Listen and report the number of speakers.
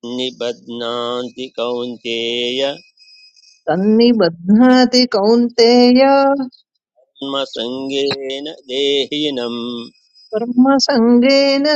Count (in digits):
2